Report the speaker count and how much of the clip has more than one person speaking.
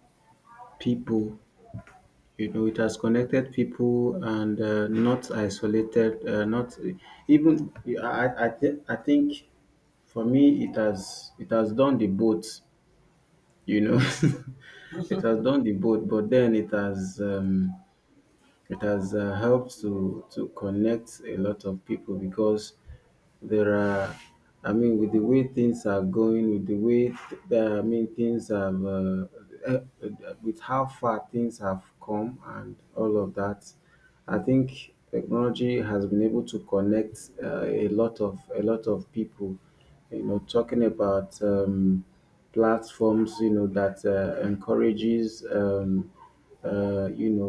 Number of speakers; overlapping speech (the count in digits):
1, no overlap